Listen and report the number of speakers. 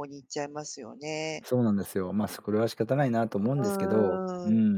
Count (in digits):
2